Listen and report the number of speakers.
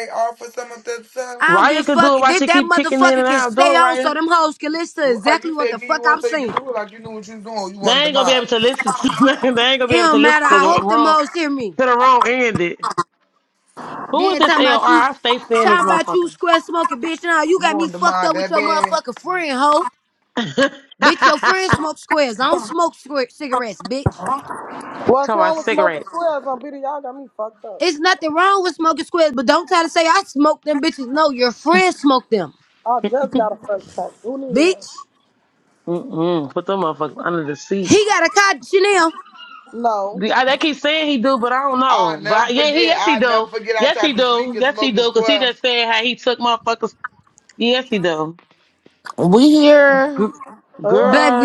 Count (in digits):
5